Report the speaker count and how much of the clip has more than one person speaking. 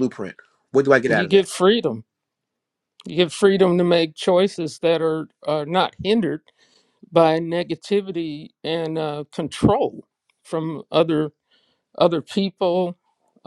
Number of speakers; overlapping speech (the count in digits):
2, about 3%